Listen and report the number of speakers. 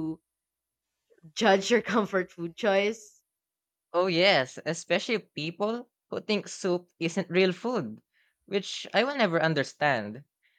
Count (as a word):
two